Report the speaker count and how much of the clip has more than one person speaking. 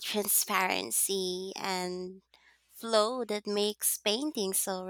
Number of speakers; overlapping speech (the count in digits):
1, no overlap